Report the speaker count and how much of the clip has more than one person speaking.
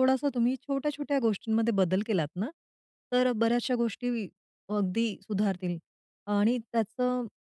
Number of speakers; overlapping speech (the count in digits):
1, no overlap